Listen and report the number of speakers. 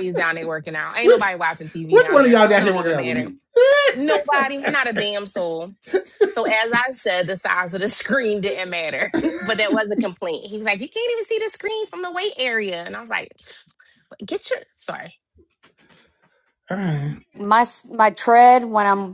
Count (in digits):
3